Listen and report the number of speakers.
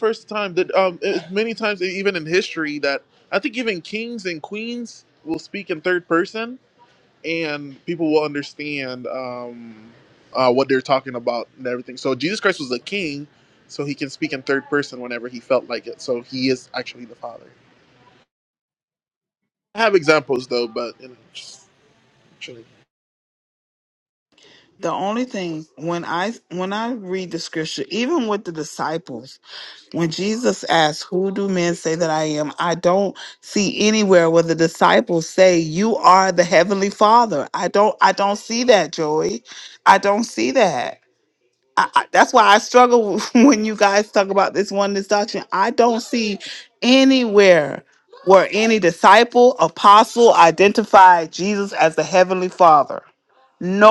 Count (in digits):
2